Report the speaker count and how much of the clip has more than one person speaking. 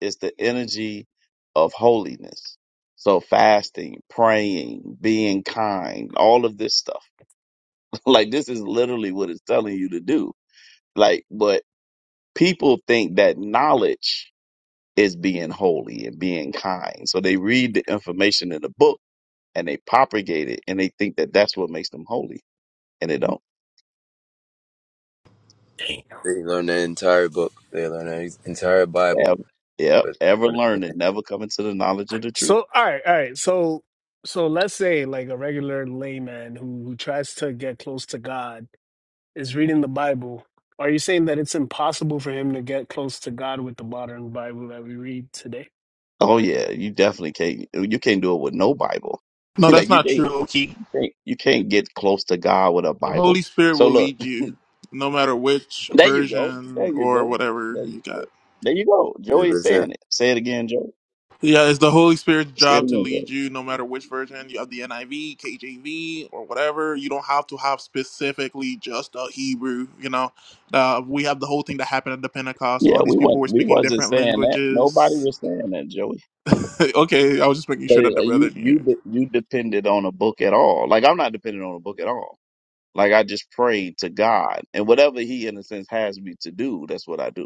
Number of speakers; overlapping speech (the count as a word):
four, about 9%